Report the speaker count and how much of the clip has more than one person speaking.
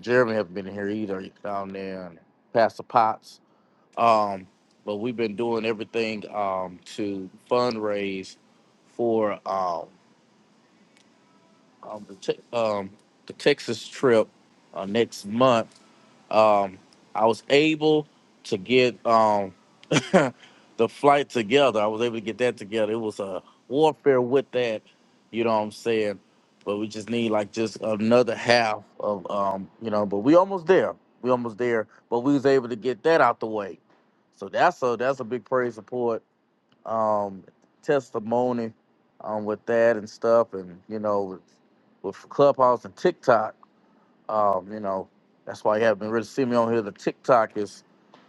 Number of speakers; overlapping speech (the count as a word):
one, no overlap